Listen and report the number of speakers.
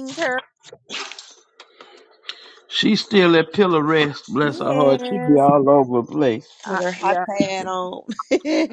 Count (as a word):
three